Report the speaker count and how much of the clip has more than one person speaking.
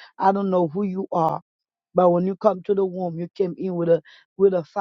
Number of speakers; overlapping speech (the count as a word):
one, no overlap